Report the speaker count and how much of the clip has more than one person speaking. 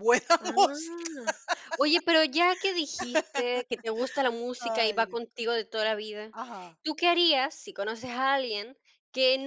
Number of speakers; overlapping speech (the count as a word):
two, about 14%